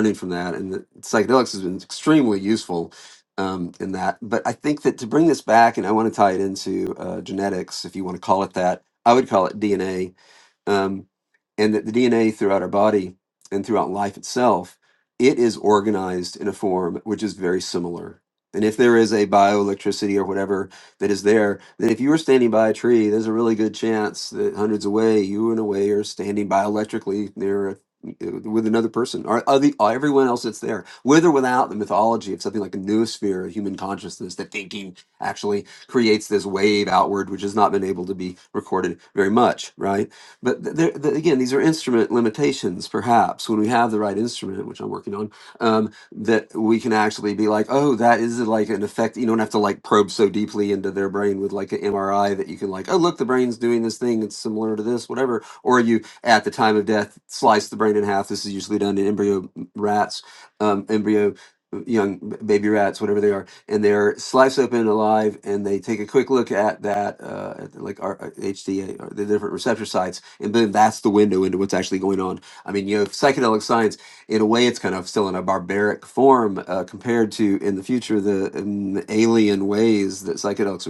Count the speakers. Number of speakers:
one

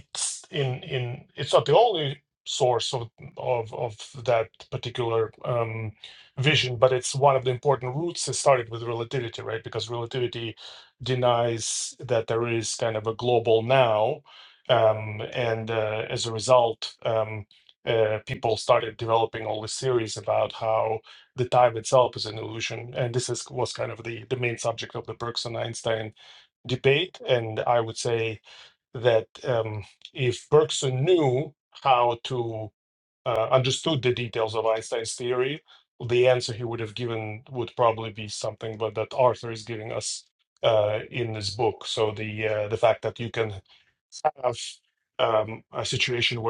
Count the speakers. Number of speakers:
one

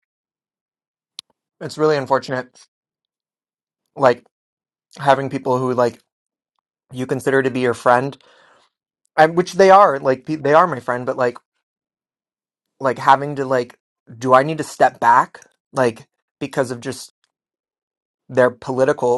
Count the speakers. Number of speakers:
one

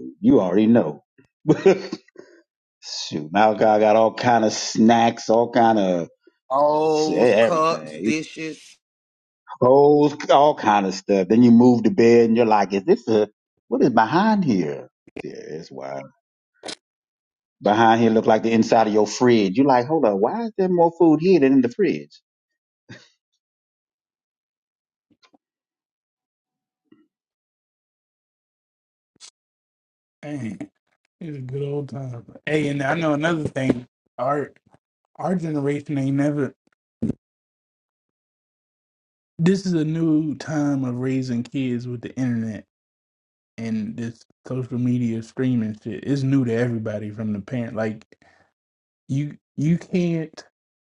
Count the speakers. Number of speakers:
three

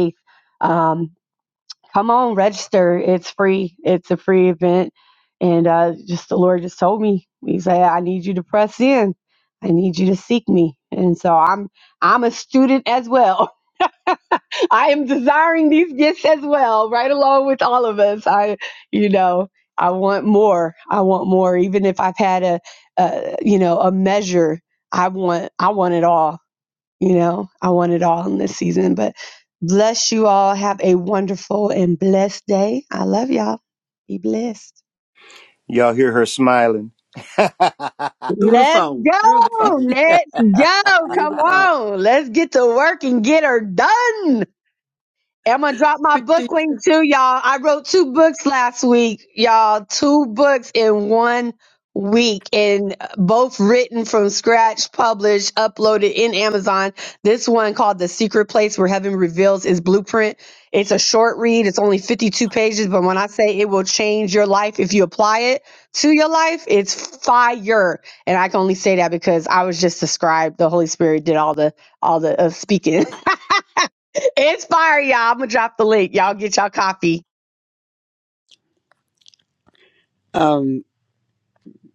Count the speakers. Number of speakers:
three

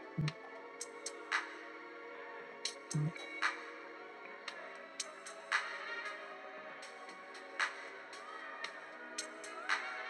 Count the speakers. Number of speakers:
zero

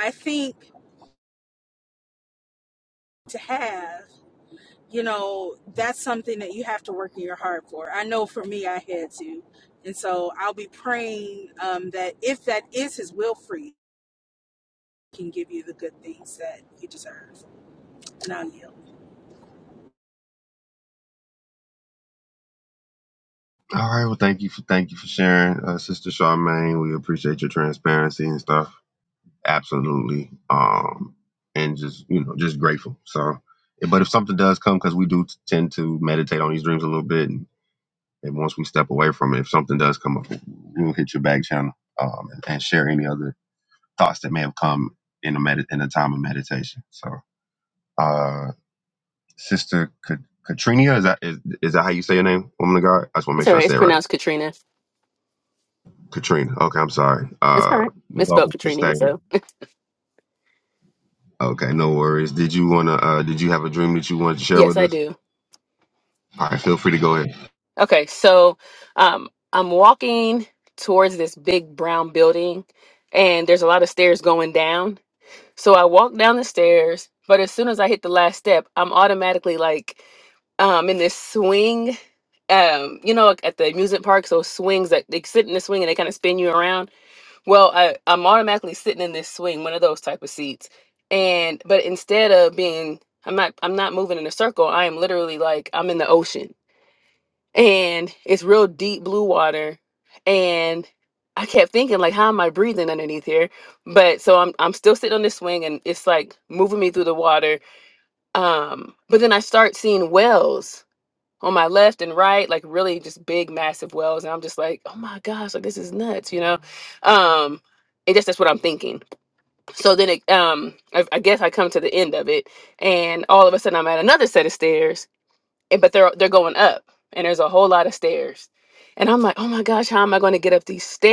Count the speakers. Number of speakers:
three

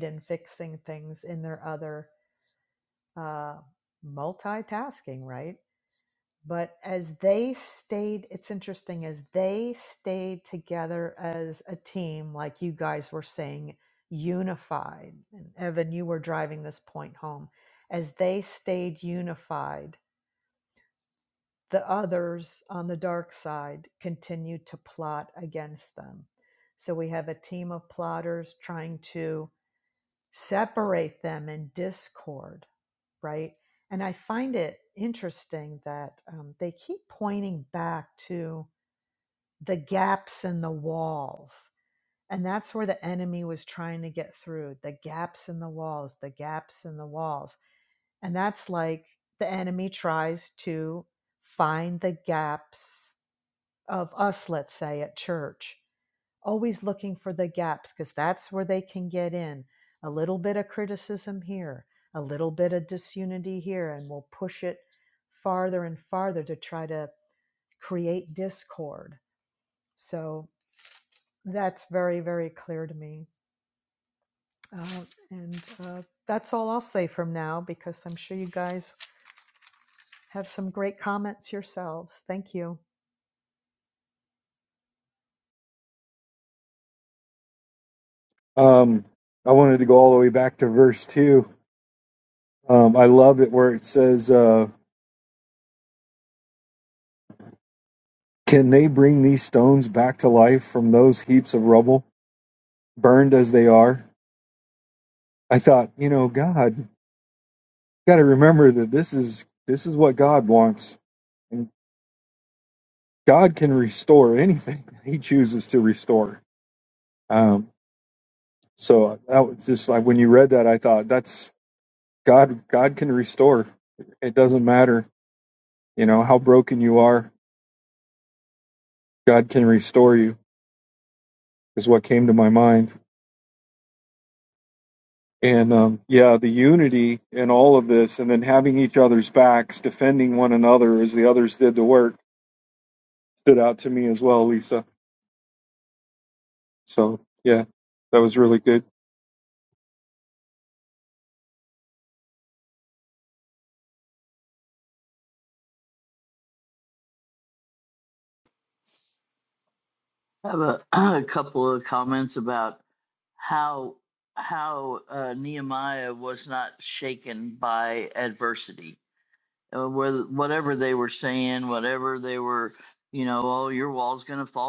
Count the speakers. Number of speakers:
three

